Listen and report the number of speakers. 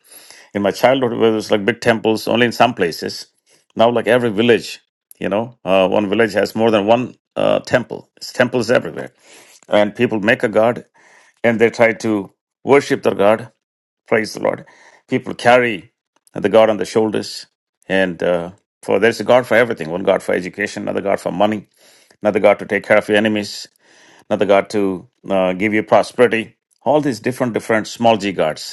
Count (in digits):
1